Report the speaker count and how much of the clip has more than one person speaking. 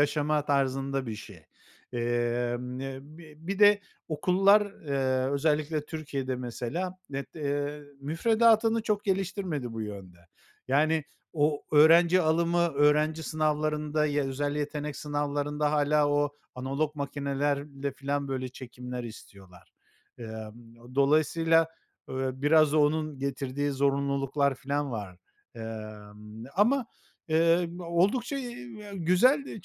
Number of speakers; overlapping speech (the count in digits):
1, no overlap